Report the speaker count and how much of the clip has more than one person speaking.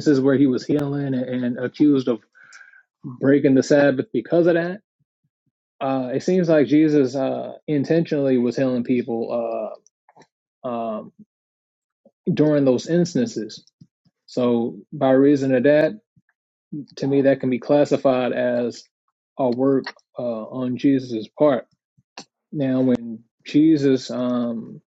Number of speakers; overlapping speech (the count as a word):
one, no overlap